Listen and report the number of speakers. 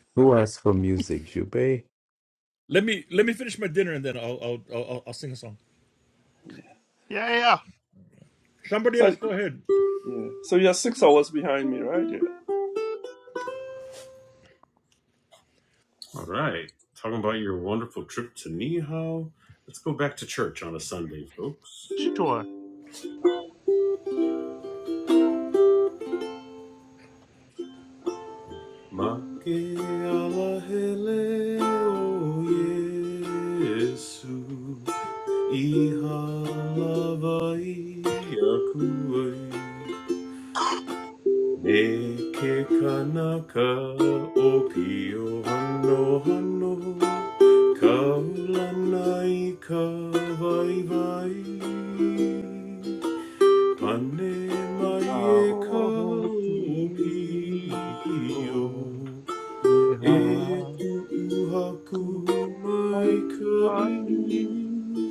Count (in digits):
5